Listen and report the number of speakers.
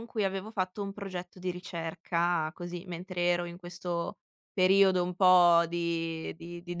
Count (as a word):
one